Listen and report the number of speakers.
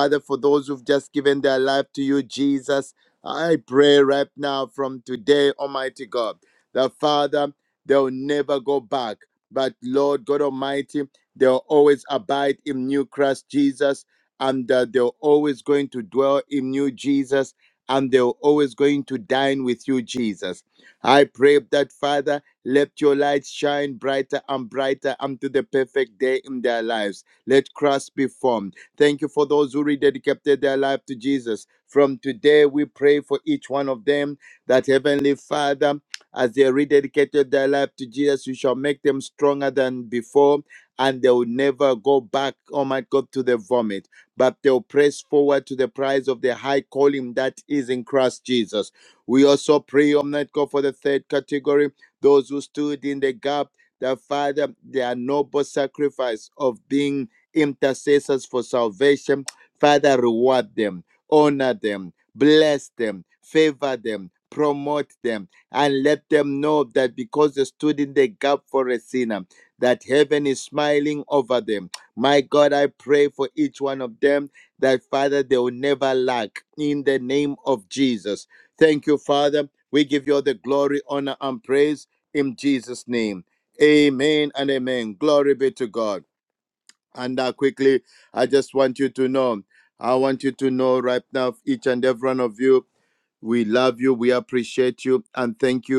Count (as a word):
one